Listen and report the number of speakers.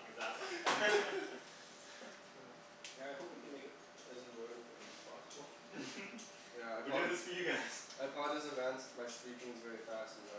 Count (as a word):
three